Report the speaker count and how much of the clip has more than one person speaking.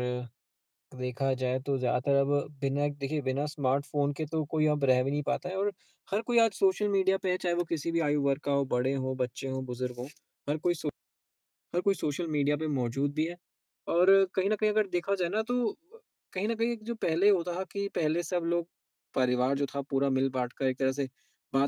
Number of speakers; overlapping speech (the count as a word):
one, no overlap